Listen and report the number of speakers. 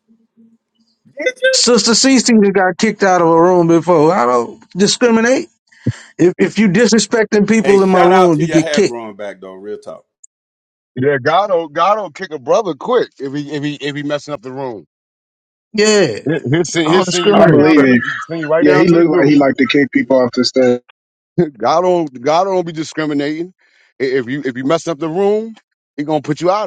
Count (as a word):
four